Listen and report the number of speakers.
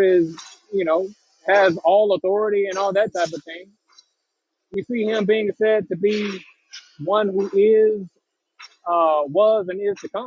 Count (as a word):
one